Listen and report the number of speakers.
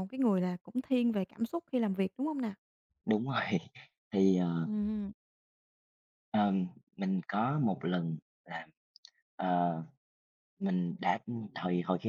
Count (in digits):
2